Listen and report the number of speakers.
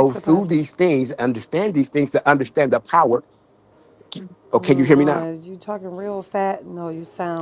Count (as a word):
two